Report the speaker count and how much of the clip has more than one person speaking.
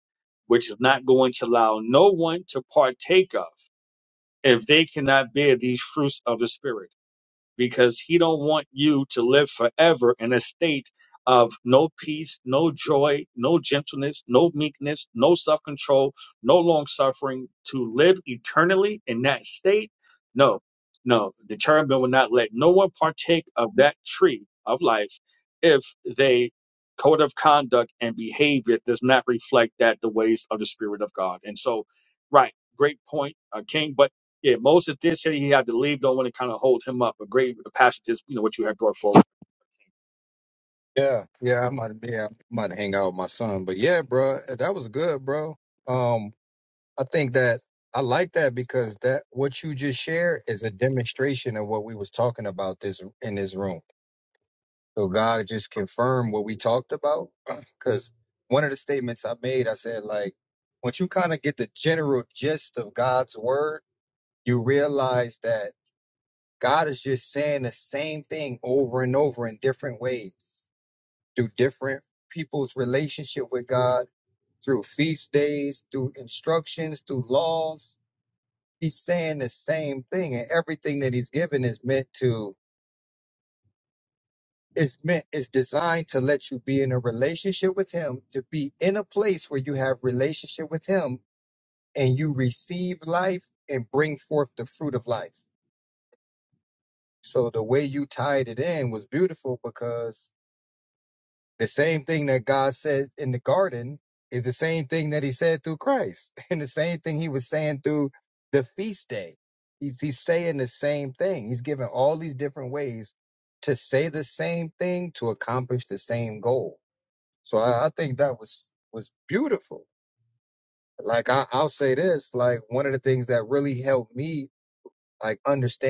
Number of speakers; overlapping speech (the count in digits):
2, no overlap